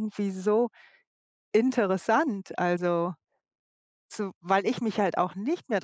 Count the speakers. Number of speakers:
one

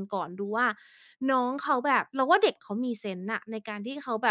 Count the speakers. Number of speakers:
one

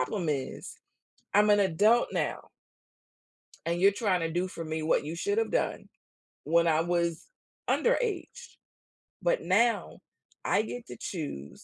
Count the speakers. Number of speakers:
one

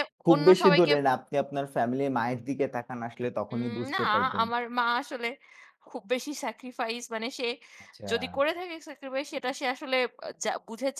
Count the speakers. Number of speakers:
two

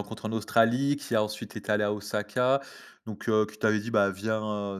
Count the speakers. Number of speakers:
one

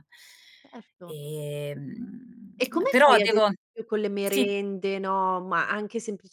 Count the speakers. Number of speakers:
two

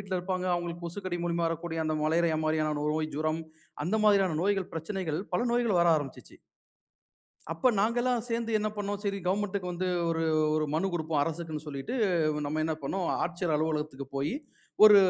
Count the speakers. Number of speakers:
one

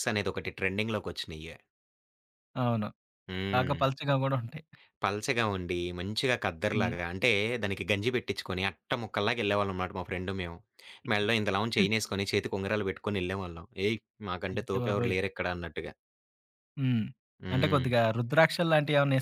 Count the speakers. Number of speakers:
two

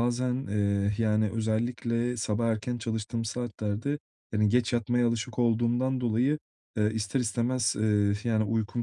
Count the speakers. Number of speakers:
one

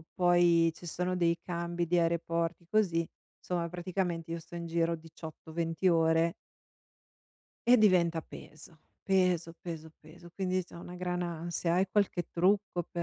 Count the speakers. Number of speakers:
one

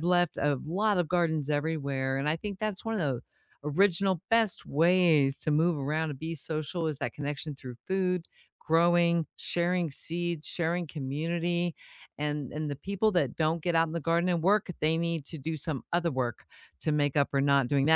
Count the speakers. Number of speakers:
one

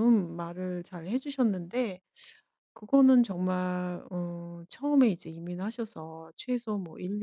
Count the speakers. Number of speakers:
one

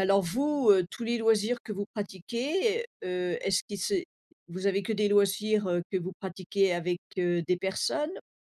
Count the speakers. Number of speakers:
one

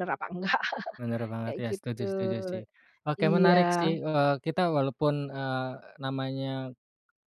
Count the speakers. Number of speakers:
two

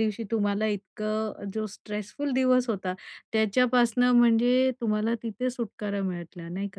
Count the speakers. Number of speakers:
one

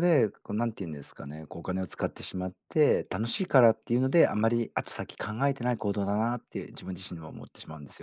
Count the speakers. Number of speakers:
one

